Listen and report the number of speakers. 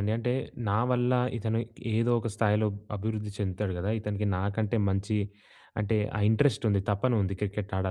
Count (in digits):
1